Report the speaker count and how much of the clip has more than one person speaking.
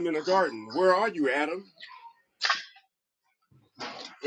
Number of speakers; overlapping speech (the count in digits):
1, no overlap